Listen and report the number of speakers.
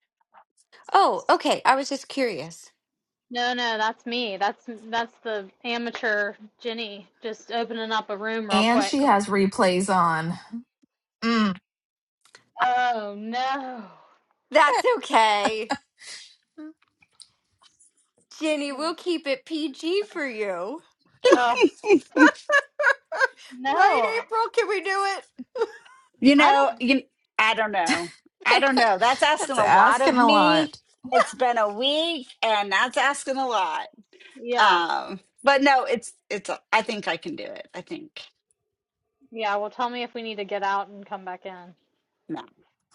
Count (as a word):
four